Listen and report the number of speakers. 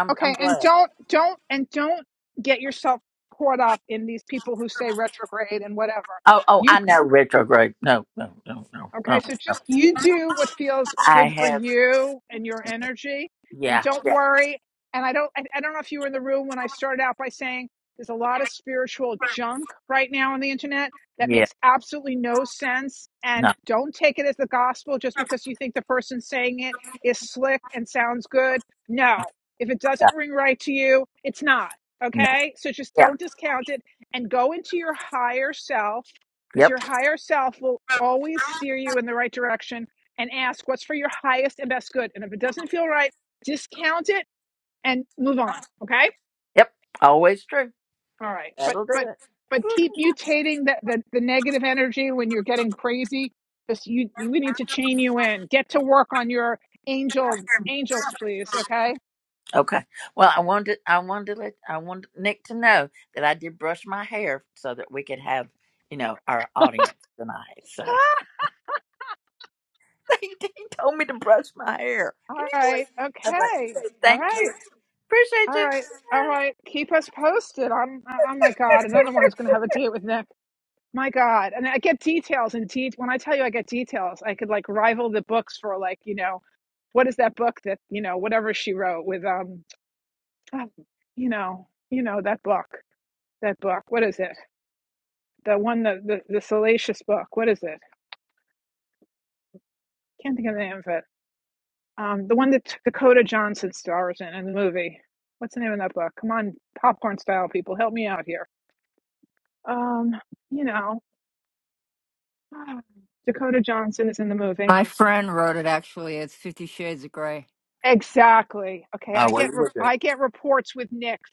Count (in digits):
3